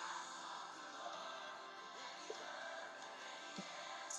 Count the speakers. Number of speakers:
0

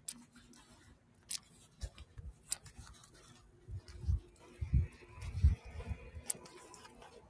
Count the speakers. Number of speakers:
0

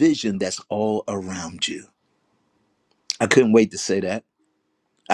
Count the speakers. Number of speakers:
1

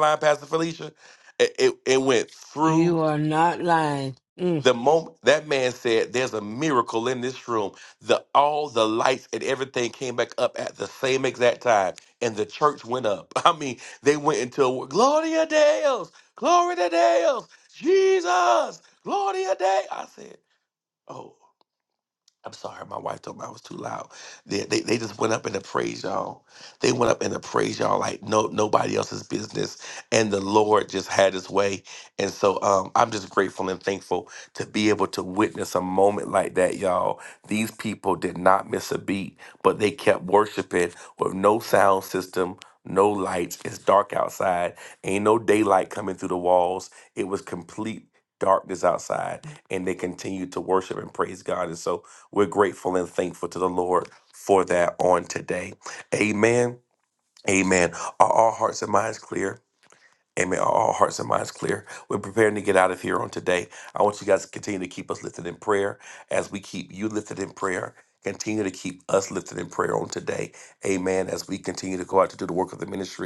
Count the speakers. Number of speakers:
2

